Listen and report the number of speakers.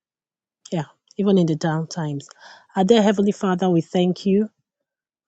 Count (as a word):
one